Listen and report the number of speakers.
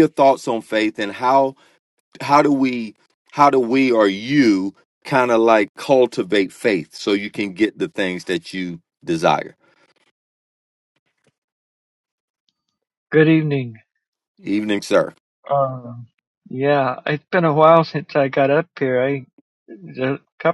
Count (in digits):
2